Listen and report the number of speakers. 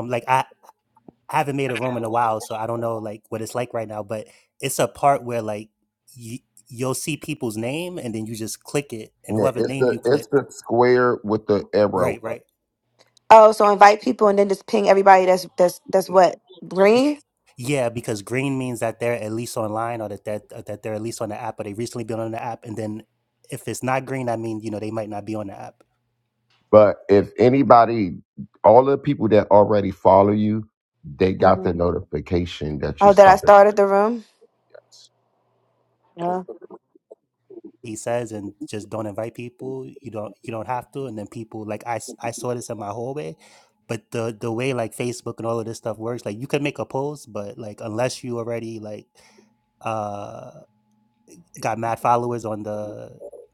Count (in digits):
3